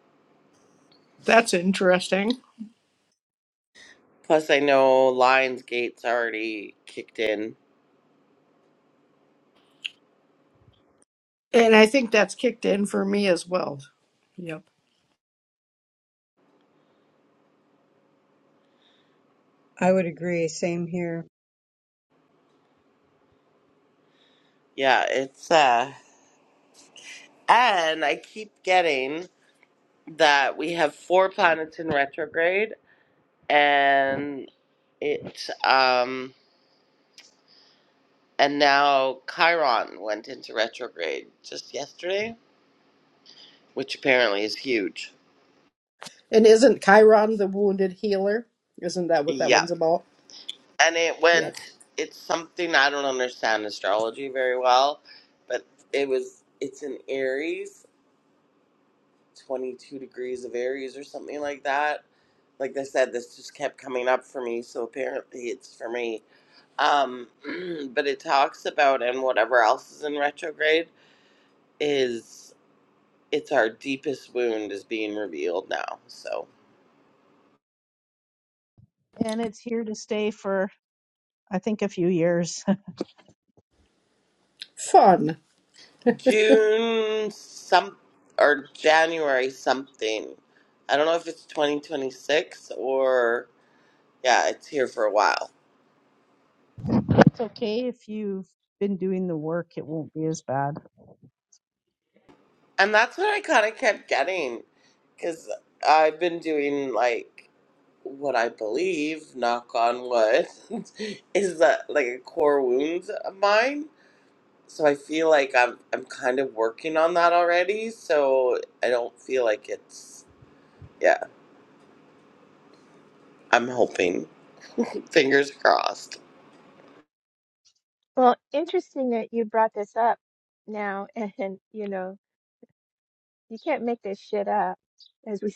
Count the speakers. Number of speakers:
5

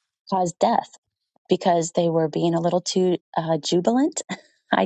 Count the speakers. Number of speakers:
1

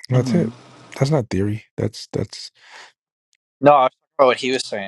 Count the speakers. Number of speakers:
2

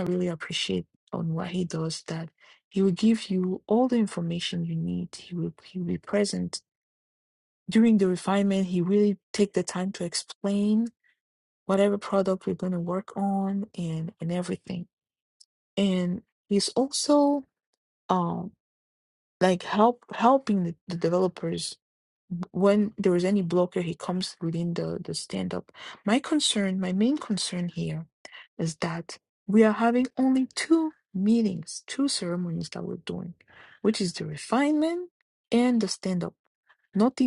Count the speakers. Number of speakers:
1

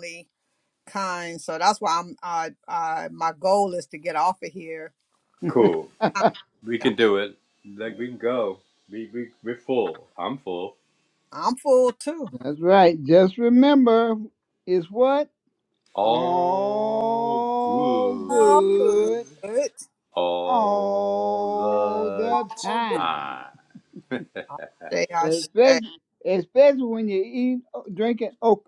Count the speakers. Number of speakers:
3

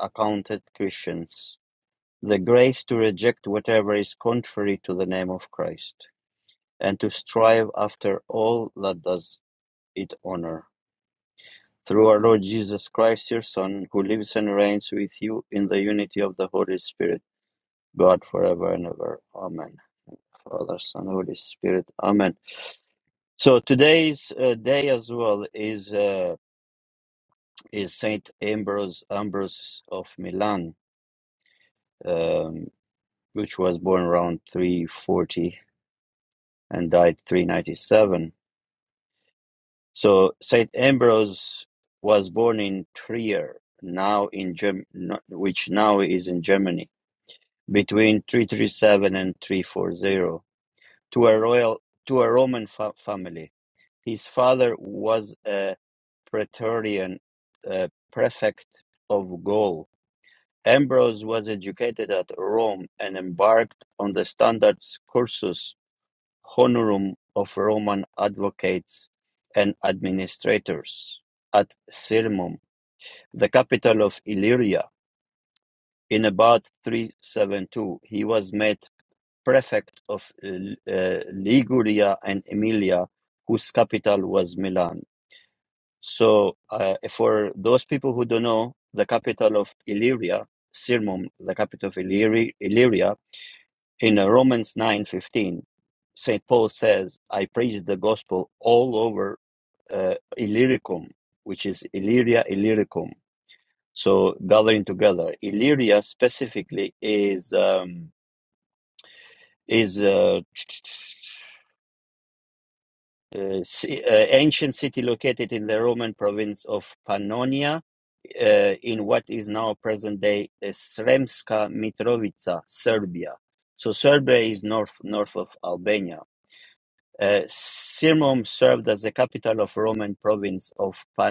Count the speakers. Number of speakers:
1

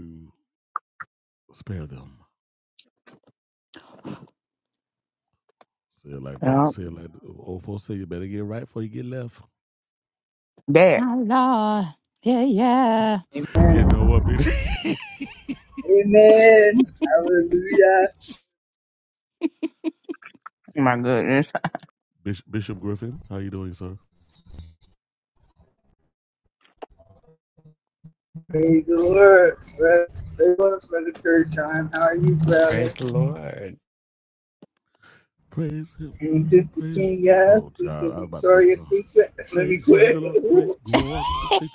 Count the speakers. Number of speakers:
5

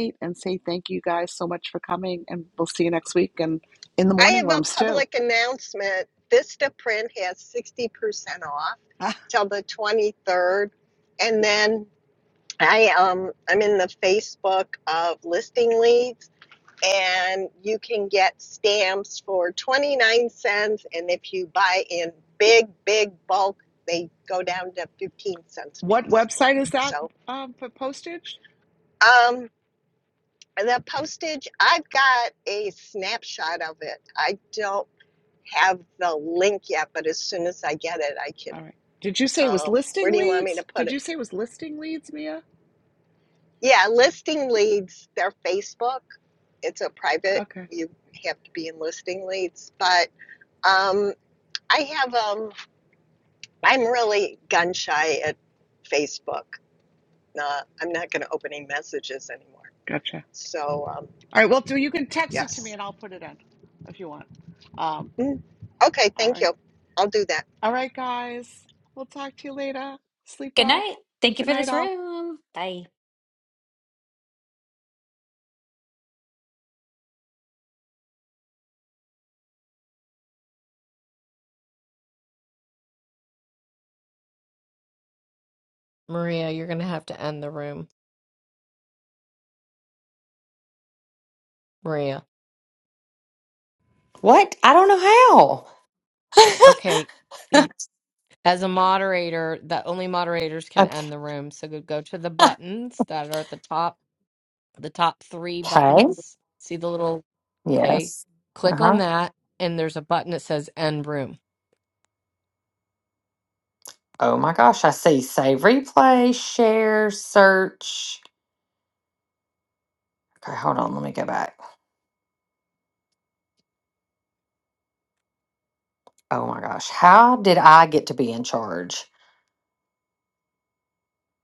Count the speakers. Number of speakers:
5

